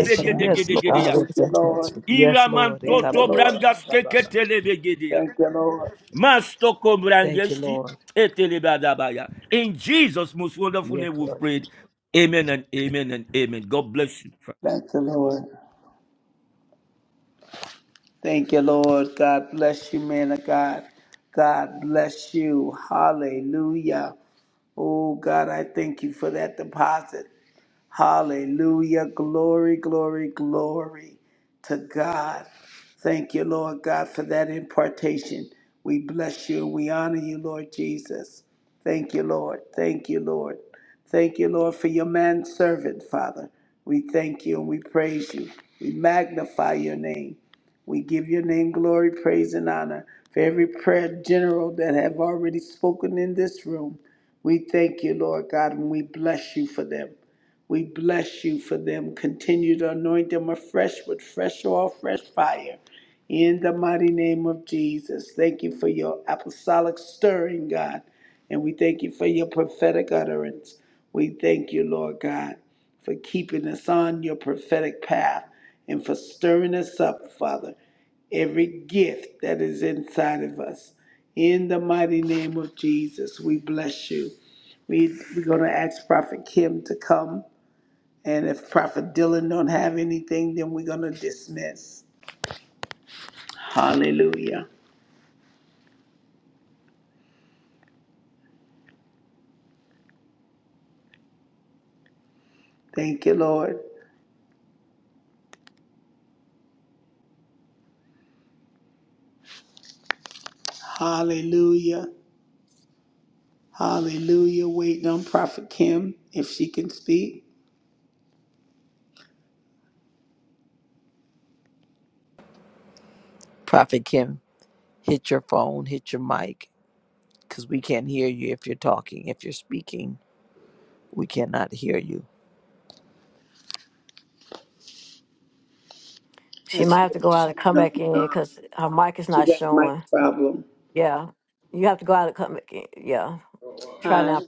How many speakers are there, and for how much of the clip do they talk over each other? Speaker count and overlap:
4, about 5%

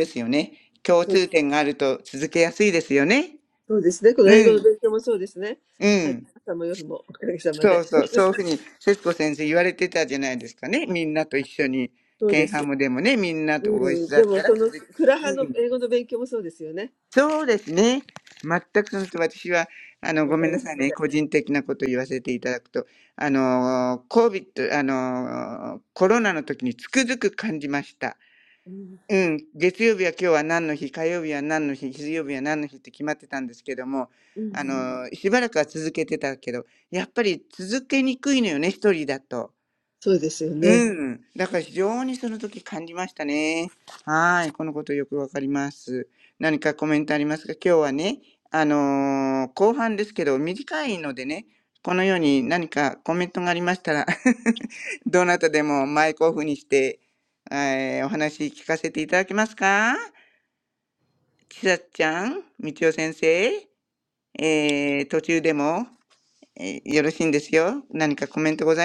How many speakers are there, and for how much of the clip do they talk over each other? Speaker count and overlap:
2, about 6%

